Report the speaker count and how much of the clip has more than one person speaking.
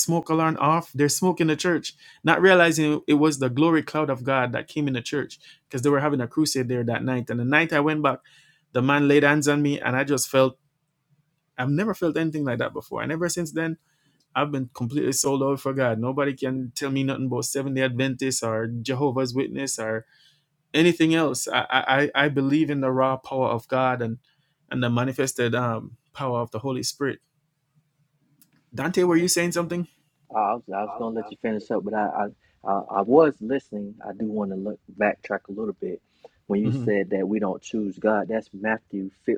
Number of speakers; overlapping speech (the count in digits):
2, about 1%